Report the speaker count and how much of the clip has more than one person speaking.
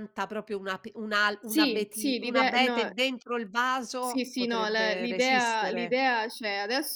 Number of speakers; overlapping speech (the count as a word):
two, about 46%